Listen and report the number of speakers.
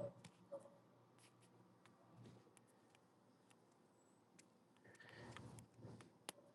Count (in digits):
0